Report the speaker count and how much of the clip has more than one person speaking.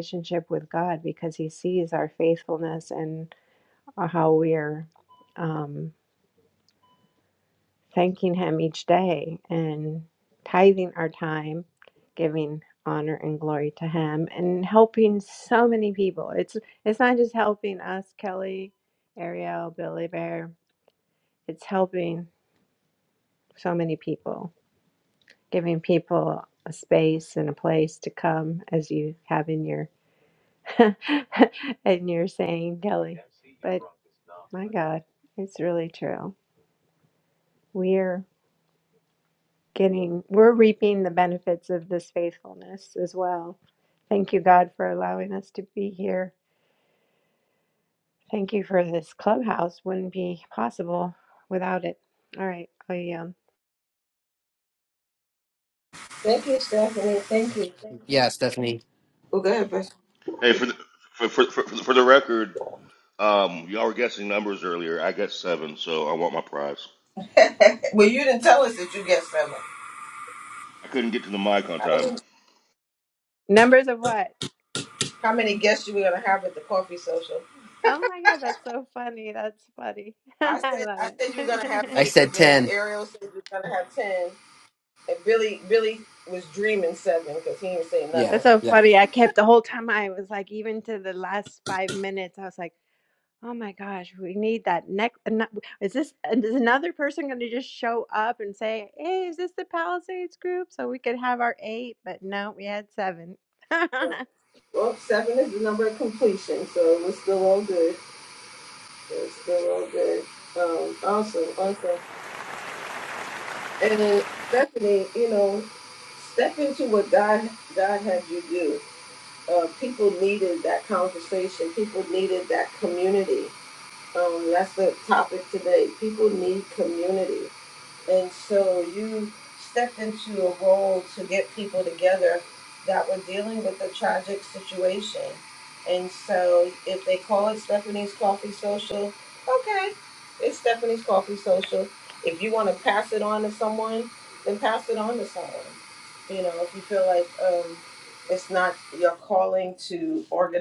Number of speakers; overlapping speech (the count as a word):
four, about 2%